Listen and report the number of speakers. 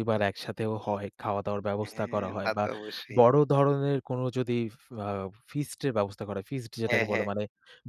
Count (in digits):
2